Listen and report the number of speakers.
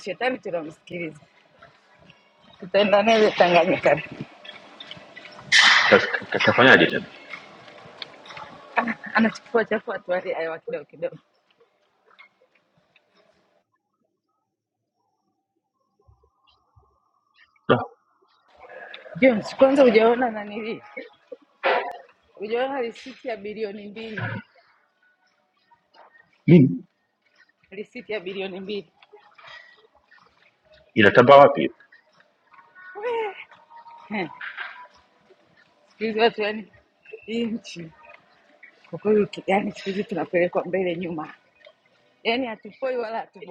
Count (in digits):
2